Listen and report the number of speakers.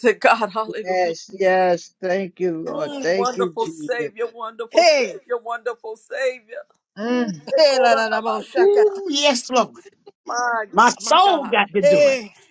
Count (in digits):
4